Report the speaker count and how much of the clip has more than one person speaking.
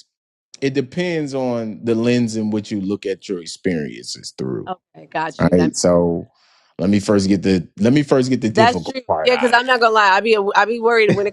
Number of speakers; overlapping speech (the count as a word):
two, about 13%